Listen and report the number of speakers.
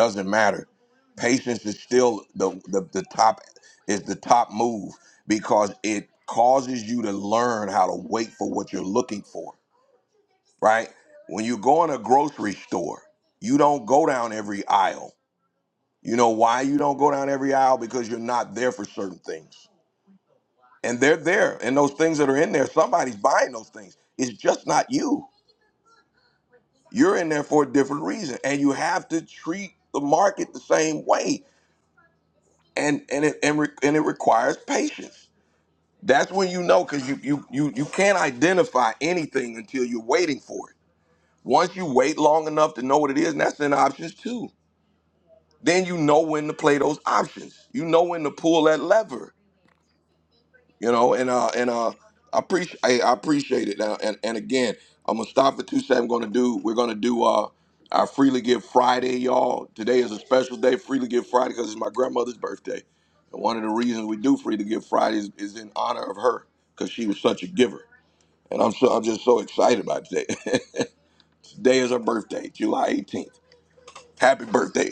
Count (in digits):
1